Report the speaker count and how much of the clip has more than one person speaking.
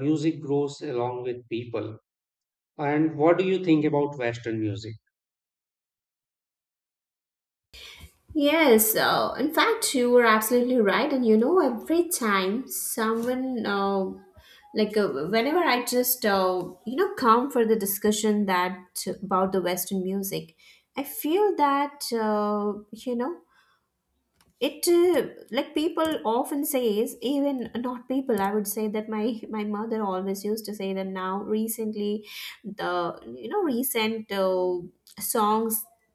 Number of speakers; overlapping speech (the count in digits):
2, no overlap